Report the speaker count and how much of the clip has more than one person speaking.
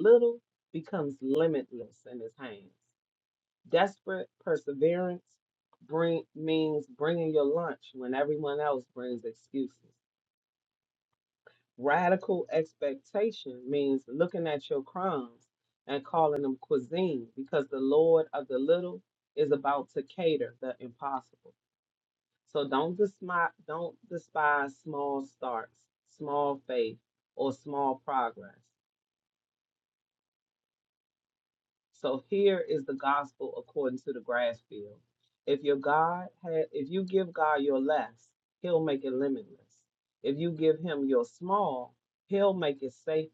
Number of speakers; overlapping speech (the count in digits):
1, no overlap